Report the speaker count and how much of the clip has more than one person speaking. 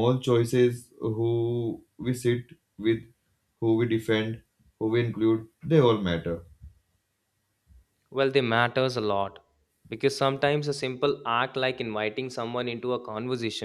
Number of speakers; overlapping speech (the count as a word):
two, no overlap